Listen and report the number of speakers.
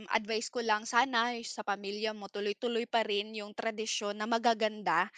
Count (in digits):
1